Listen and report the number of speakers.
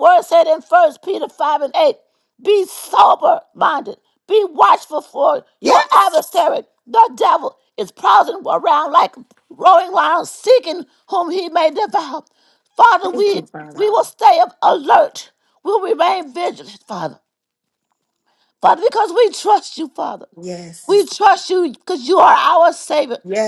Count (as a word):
two